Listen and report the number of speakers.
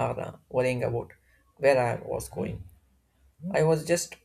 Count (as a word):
one